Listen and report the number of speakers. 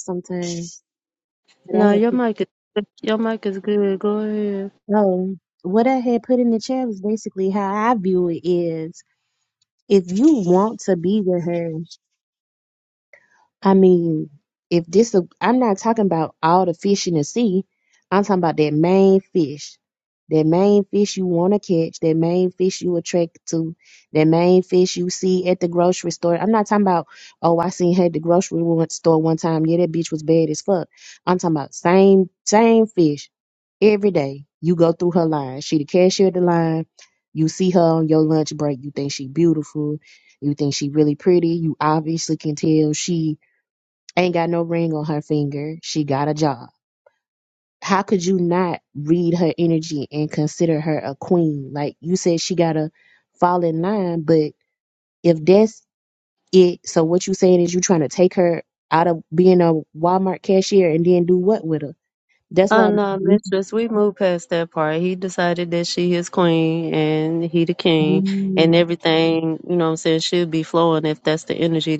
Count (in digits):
2